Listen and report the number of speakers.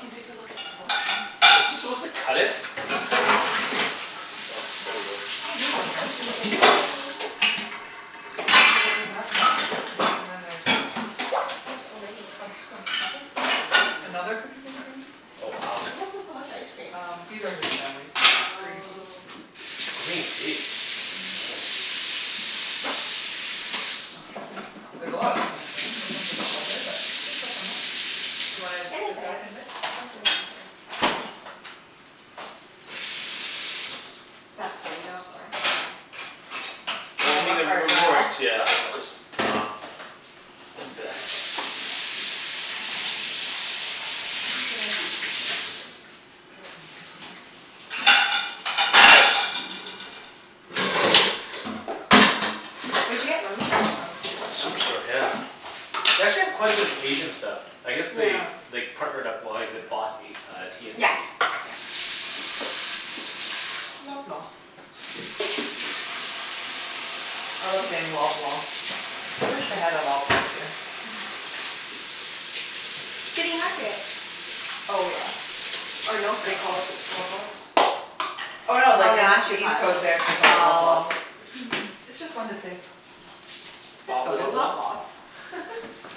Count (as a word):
three